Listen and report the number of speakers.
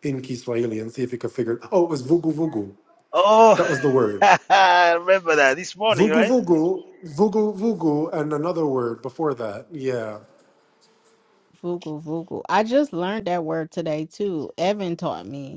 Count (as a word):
three